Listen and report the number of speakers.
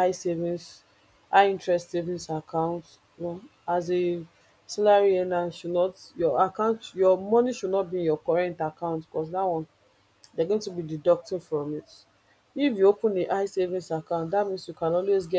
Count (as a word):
one